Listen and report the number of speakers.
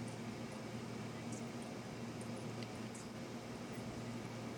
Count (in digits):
0